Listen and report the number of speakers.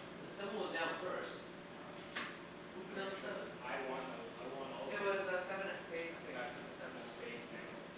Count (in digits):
3